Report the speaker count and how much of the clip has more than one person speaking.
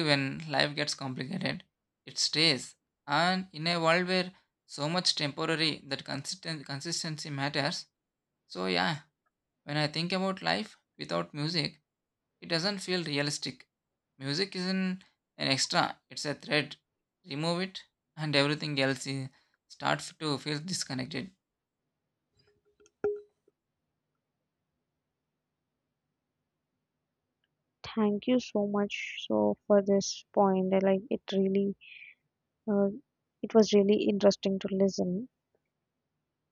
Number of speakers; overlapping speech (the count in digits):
2, no overlap